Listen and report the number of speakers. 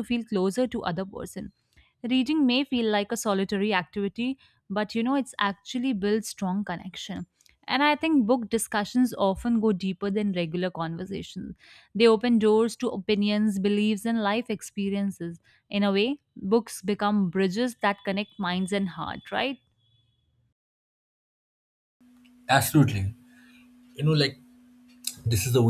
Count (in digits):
2